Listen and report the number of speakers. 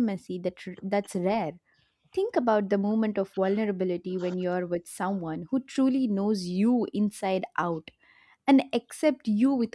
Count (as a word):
one